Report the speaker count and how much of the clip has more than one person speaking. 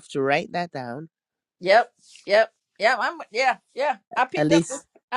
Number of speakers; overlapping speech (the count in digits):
2, about 5%